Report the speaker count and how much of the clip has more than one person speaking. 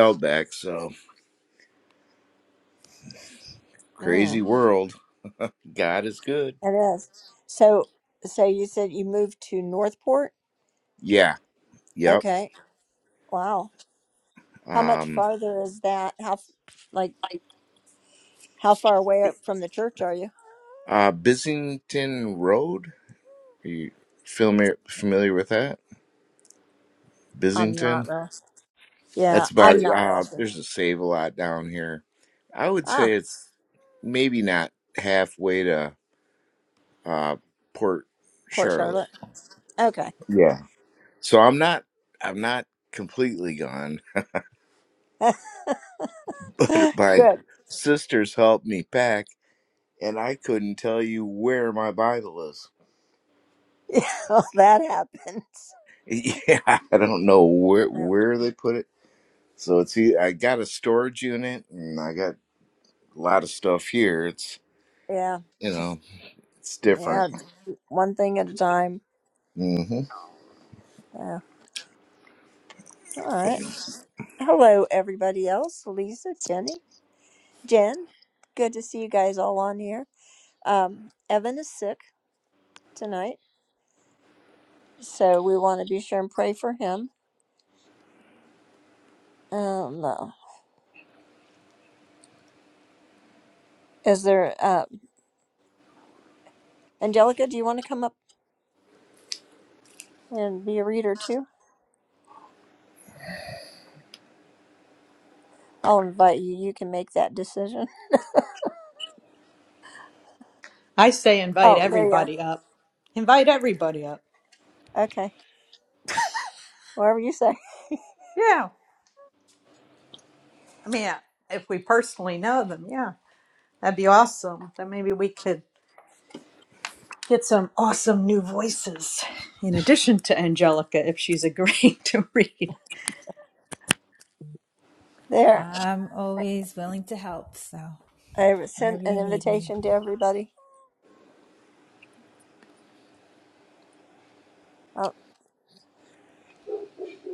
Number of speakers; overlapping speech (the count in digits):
4, about 4%